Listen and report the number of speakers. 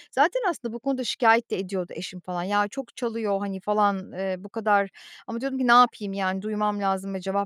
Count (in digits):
1